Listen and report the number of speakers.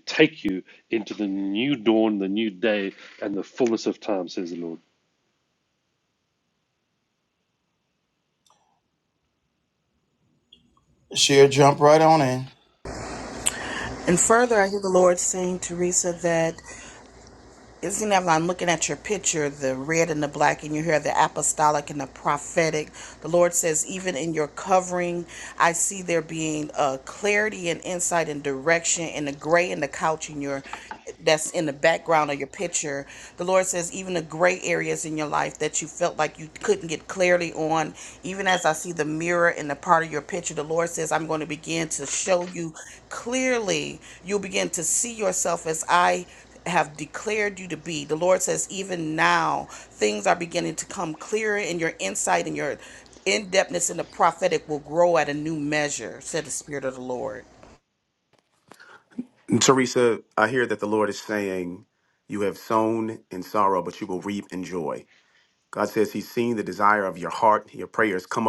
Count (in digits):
4